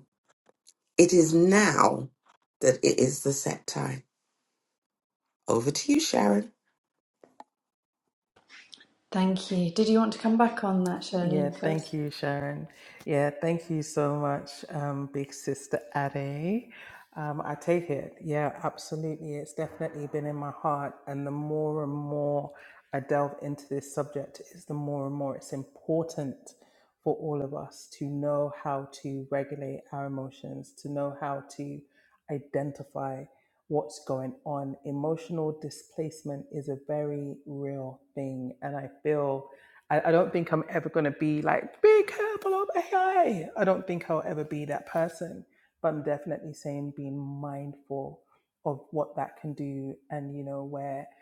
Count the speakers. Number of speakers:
3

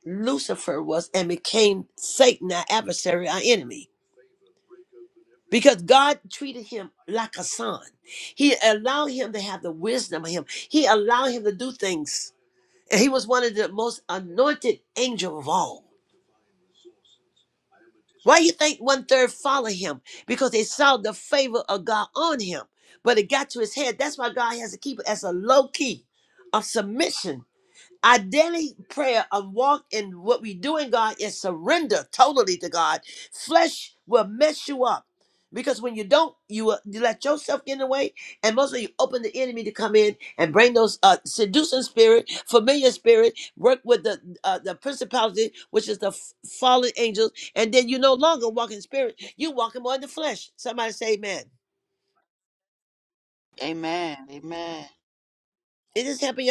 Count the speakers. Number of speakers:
2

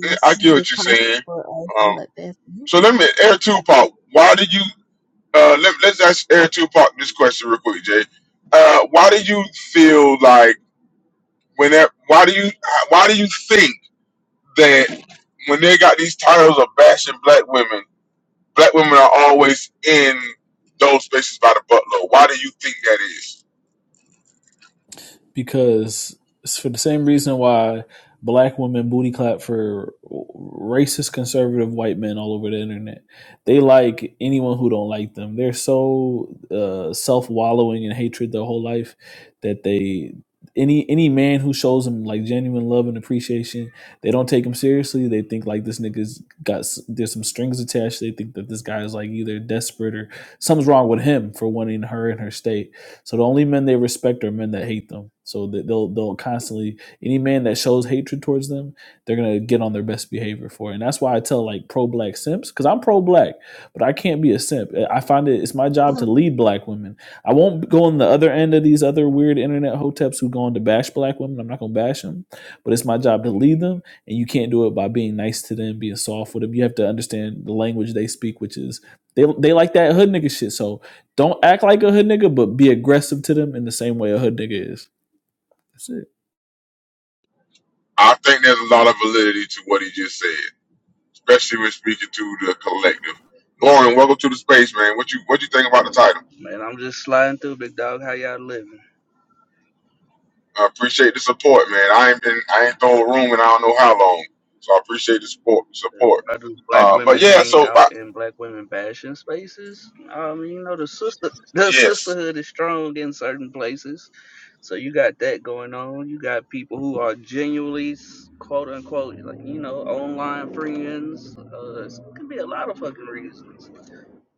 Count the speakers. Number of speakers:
4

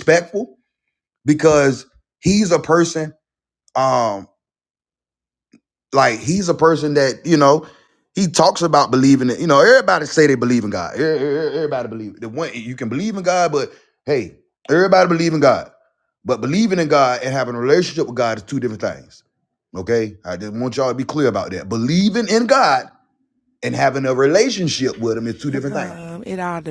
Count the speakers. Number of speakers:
2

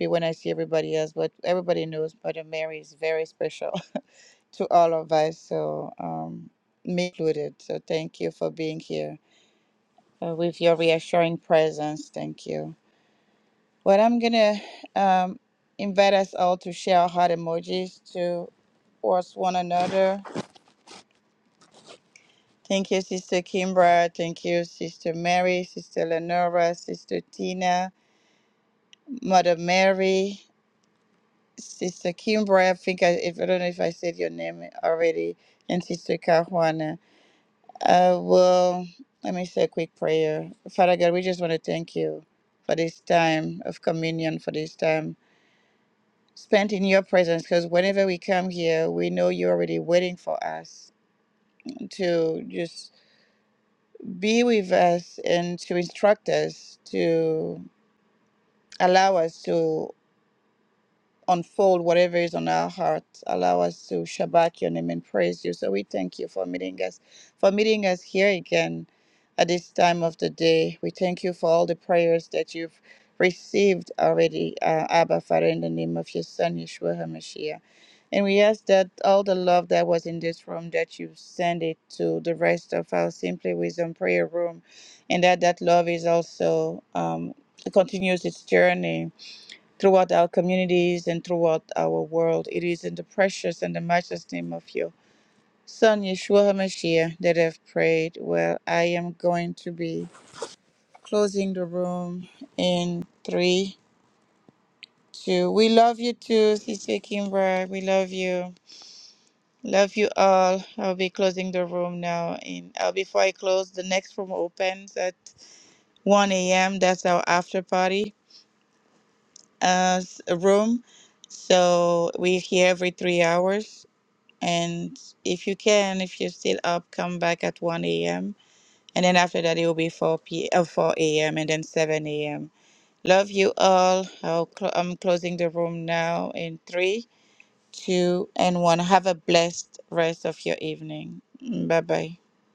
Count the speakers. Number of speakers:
1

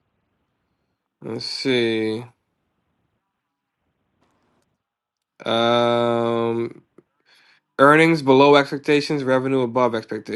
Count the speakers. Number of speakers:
1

